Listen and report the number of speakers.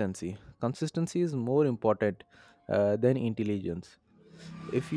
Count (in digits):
1